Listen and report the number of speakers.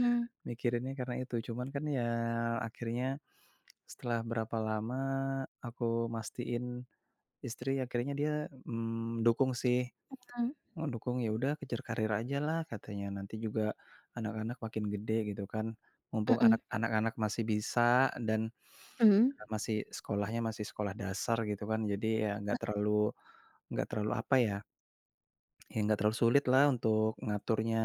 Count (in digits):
2